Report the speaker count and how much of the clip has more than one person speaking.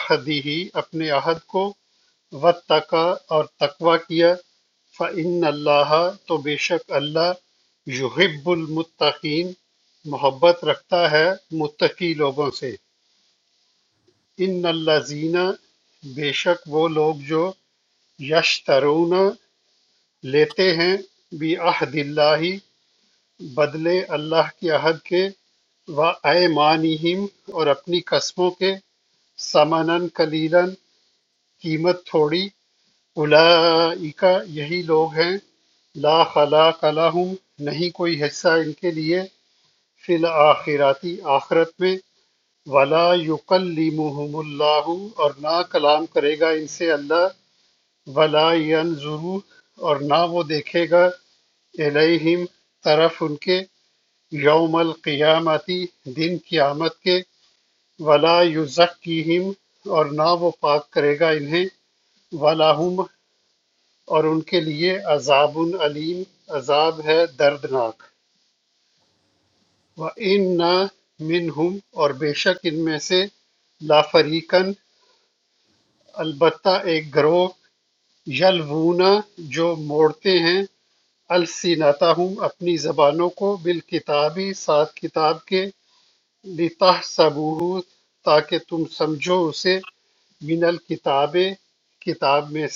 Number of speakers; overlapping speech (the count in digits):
1, no overlap